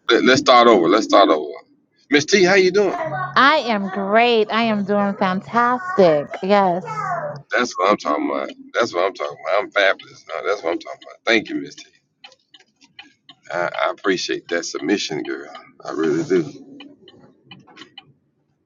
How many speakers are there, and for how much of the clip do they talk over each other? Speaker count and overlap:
2, no overlap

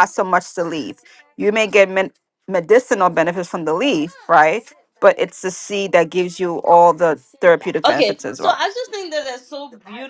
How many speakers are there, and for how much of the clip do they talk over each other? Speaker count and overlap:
2, about 7%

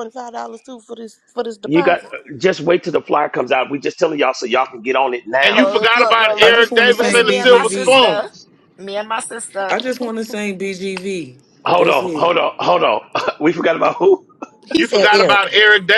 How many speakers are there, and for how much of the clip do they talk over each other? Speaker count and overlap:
5, about 29%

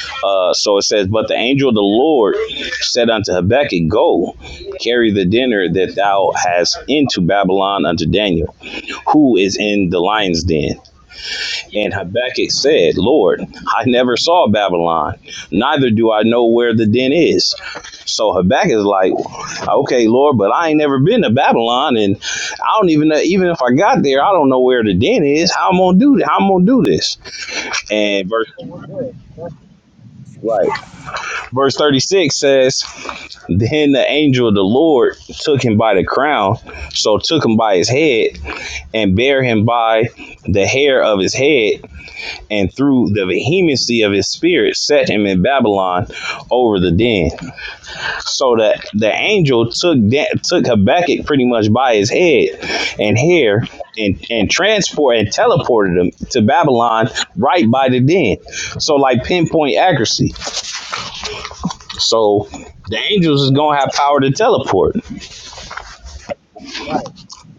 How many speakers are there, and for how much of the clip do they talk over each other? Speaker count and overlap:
2, under 1%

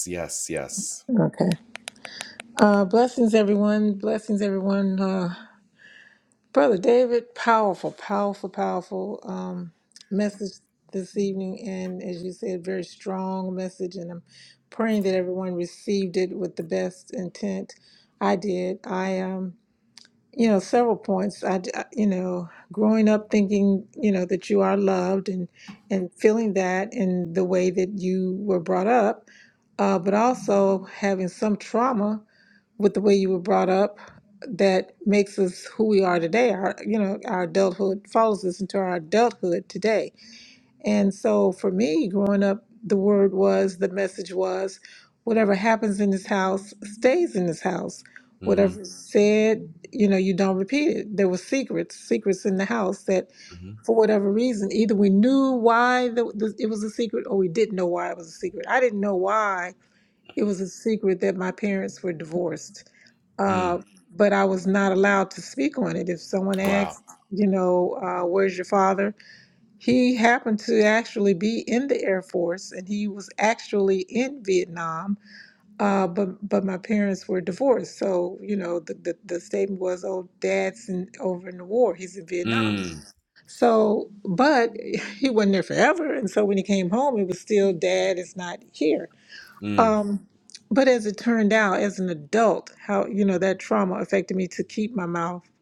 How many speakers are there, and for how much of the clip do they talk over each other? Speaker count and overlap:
2, about 1%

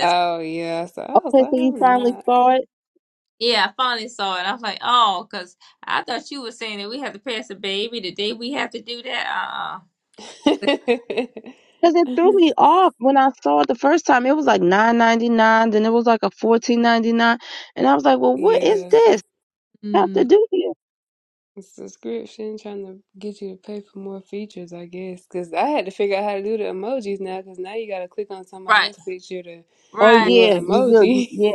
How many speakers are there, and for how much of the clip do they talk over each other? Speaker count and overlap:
3, about 12%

